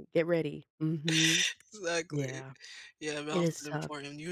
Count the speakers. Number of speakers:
two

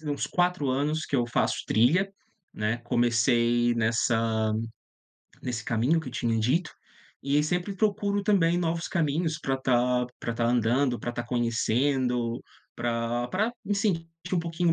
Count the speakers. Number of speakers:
one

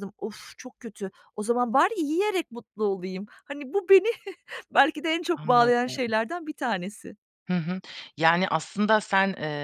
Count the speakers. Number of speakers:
two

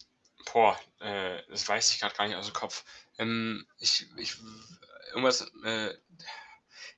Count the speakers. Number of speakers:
one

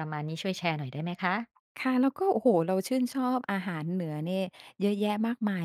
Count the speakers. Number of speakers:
two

